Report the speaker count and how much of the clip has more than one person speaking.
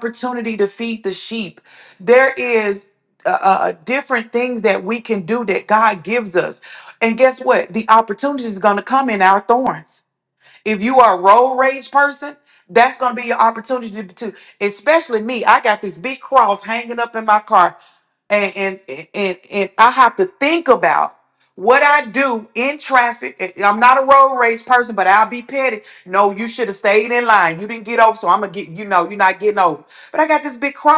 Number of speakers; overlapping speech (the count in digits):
1, no overlap